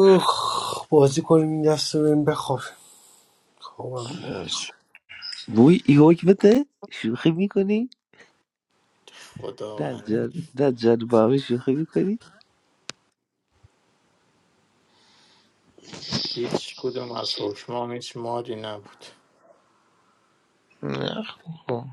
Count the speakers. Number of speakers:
4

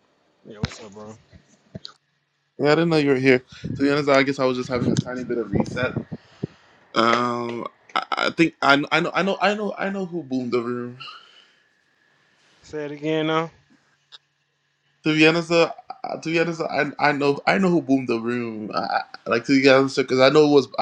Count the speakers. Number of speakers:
2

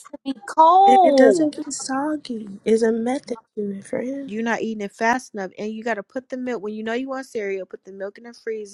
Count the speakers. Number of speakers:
3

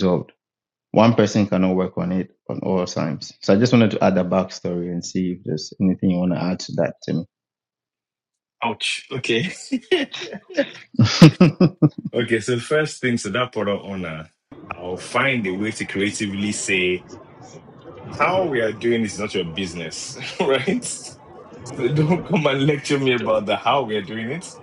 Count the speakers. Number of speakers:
2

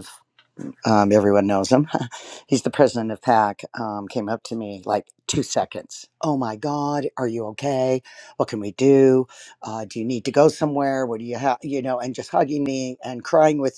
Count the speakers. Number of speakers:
1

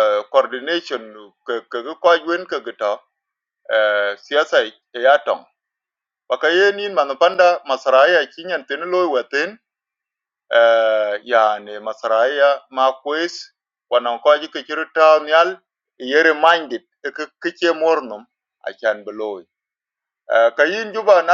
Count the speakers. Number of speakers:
1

